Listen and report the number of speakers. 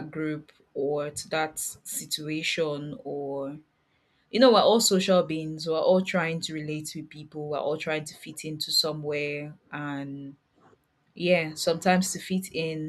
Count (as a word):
one